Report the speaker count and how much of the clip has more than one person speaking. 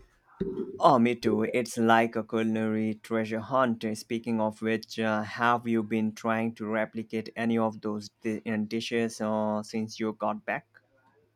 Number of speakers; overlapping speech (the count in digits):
1, no overlap